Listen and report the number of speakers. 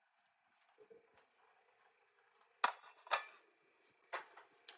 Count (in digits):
0